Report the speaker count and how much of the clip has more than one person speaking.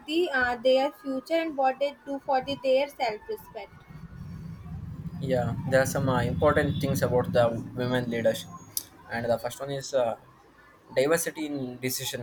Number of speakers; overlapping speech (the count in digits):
2, no overlap